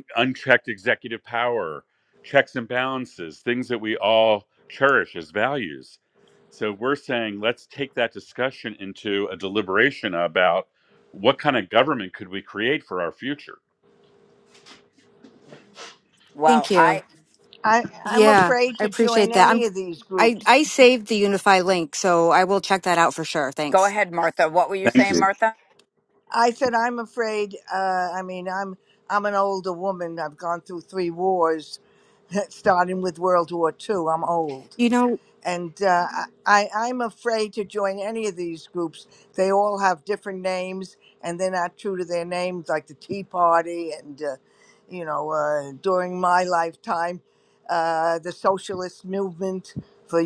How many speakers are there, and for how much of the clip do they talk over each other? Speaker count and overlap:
four, about 6%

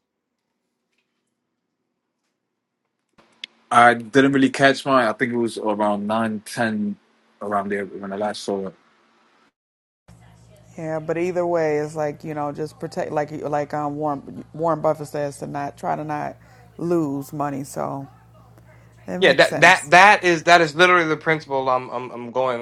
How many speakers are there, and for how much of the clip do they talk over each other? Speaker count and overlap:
three, about 2%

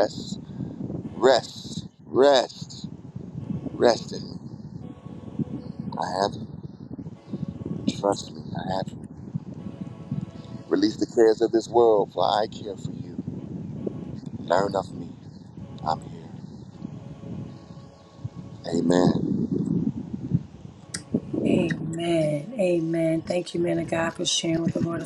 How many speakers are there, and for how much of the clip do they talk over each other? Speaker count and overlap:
two, no overlap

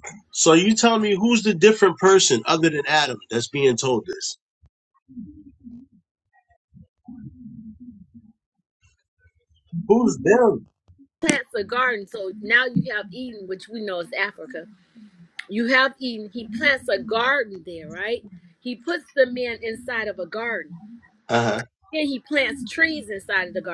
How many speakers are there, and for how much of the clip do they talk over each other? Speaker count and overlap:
two, no overlap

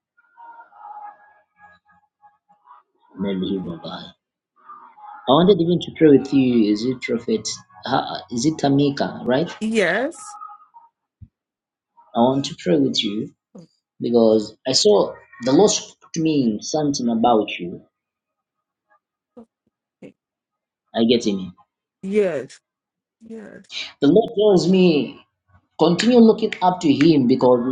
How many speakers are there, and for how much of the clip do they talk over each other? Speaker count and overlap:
two, no overlap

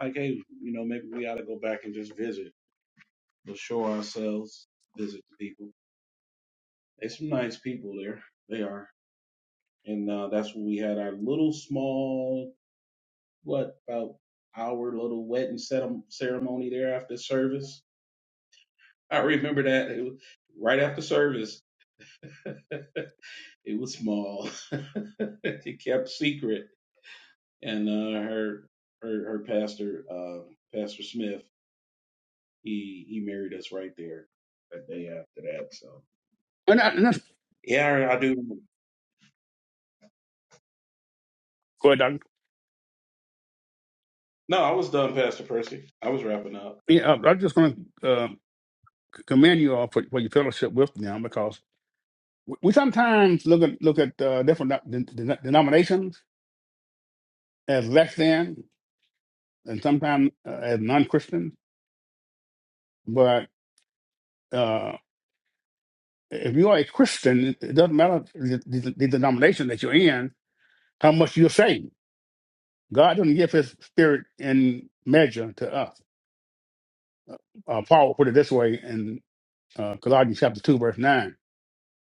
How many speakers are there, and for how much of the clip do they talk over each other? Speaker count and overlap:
two, no overlap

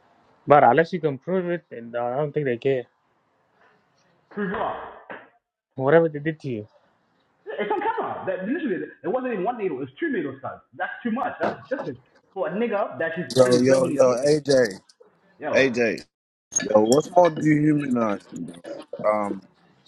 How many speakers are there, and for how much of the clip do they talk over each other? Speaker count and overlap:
three, about 6%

